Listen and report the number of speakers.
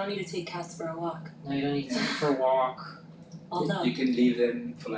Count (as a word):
three